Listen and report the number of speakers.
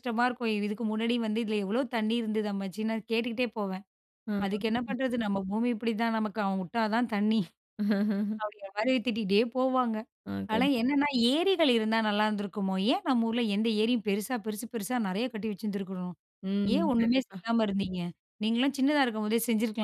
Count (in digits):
2